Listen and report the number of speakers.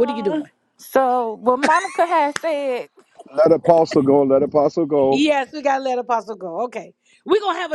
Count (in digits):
3